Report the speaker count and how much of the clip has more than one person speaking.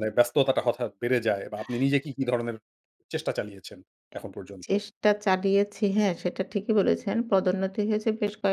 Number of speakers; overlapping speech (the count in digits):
2, about 1%